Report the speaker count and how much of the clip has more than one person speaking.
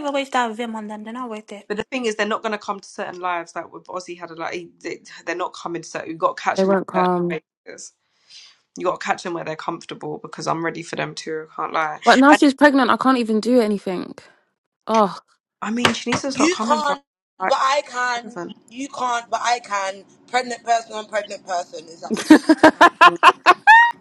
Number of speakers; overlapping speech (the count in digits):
4, about 6%